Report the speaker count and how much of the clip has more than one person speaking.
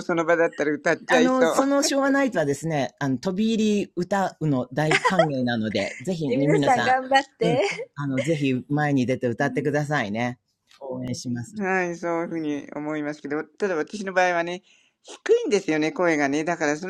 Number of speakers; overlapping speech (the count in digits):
3, about 9%